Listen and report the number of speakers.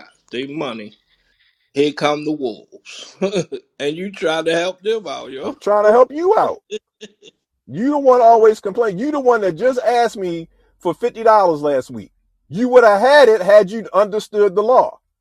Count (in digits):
2